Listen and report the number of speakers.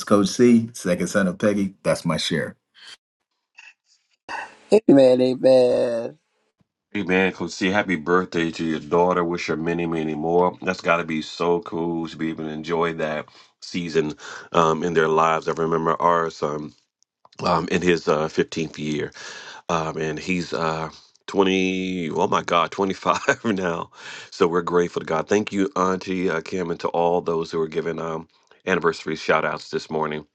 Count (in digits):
3